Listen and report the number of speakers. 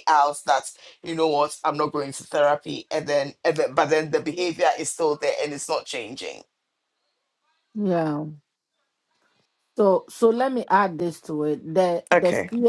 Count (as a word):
two